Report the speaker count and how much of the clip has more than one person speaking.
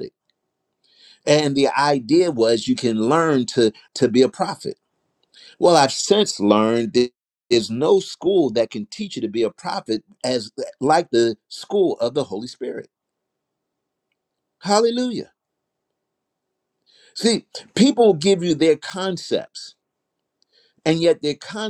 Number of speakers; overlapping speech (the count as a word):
one, no overlap